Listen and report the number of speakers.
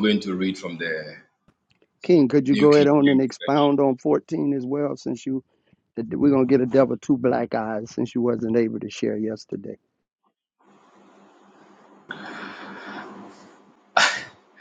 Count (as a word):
two